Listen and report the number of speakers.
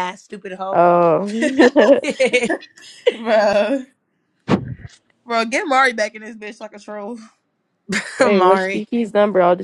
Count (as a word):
three